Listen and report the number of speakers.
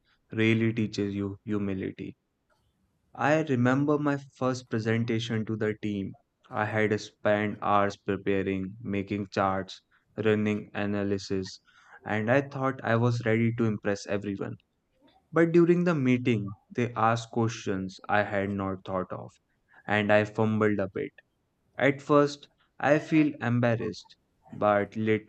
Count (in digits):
1